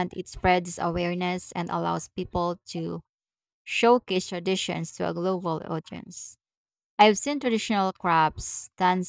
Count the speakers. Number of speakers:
1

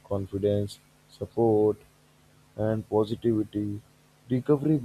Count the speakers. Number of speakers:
1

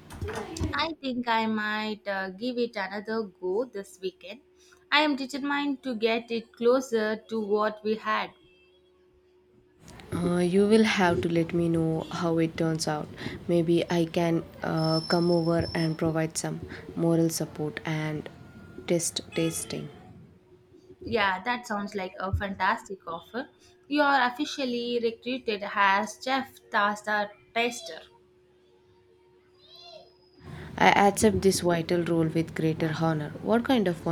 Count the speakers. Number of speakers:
2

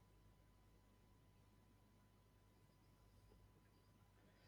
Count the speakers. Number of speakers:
0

